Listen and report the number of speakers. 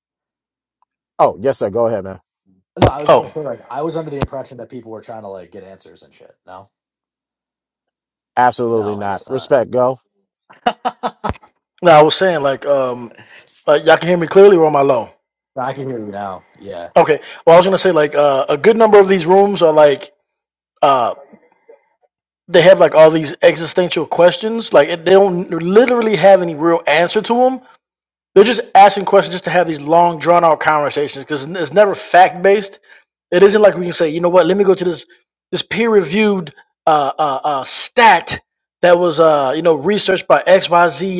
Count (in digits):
3